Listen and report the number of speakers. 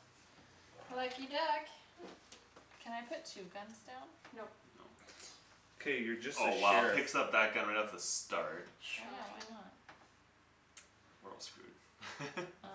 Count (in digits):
4